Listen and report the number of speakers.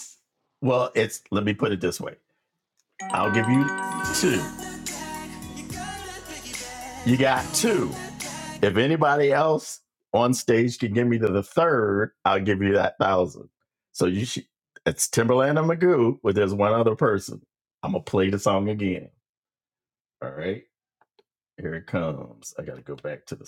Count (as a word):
one